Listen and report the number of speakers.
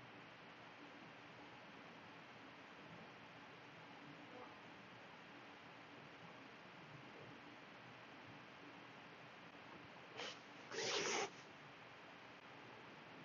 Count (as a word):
zero